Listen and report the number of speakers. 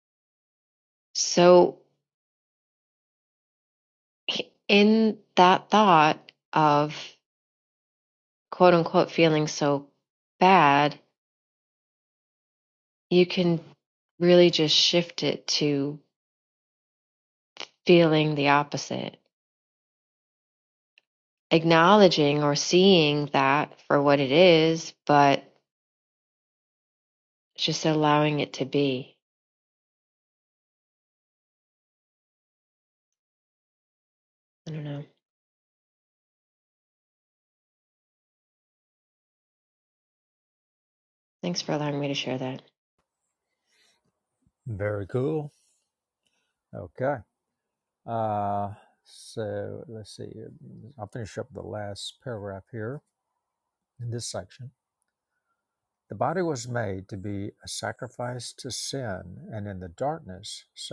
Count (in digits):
2